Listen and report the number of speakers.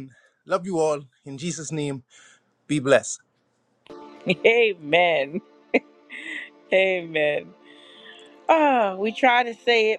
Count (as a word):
two